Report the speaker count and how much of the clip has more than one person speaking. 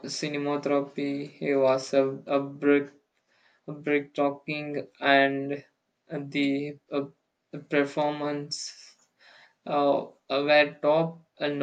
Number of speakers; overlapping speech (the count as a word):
one, no overlap